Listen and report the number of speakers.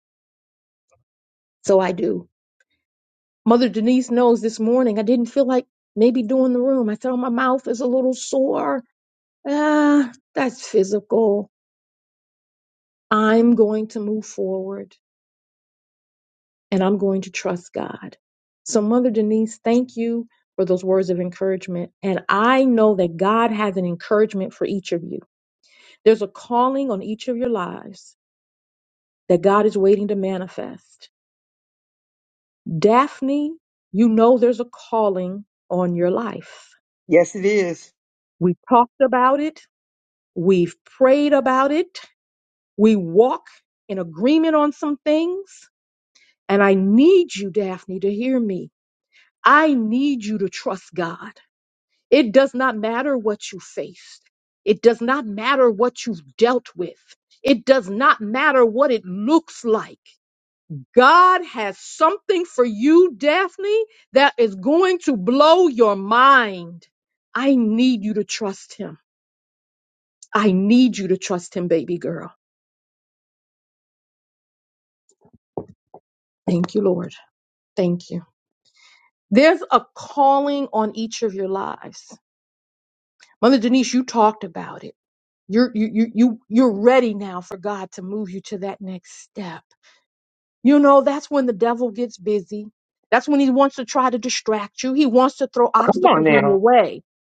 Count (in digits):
2